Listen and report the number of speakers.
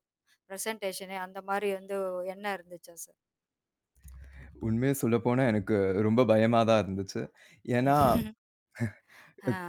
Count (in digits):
2